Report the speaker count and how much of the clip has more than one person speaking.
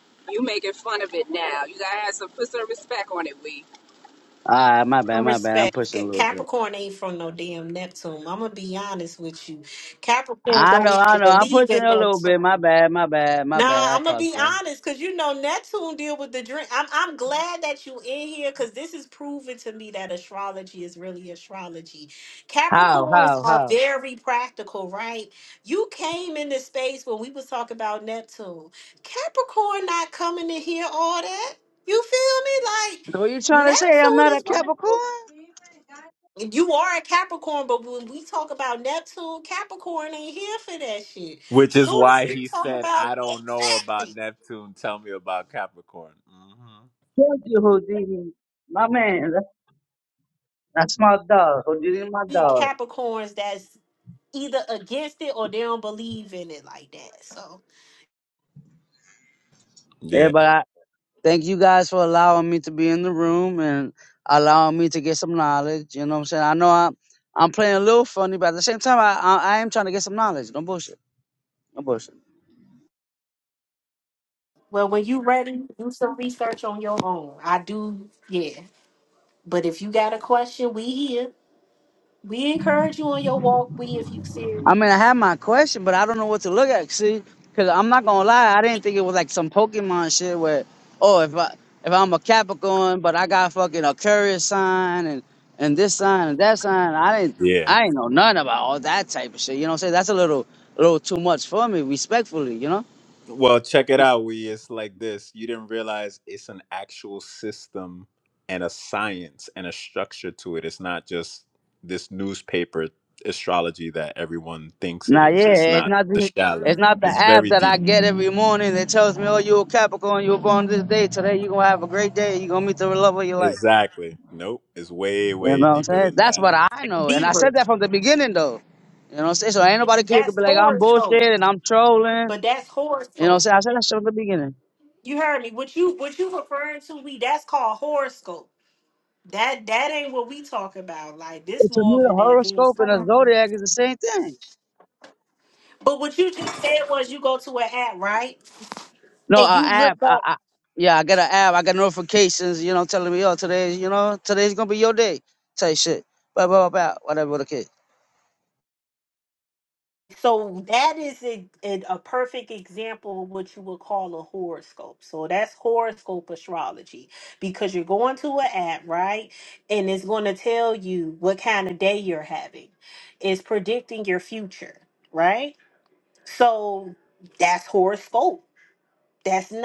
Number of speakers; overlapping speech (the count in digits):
4, about 10%